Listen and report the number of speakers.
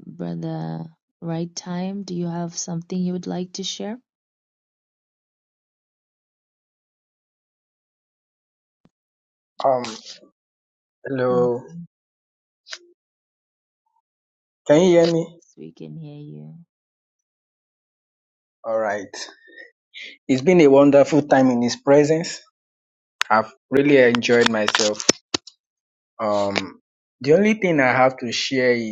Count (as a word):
two